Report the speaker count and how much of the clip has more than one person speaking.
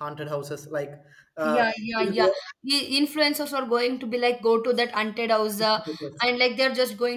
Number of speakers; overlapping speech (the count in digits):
2, about 14%